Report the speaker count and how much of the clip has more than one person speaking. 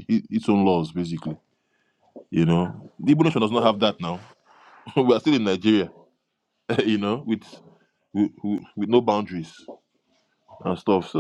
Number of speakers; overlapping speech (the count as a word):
one, no overlap